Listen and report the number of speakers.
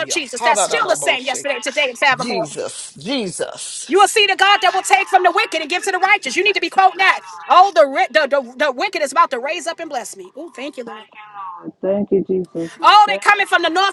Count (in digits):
3